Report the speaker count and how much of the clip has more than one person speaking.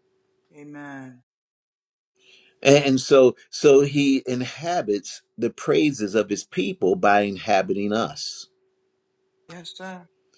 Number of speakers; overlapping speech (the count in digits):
2, no overlap